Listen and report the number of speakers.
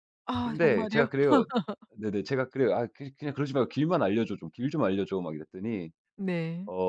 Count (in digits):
2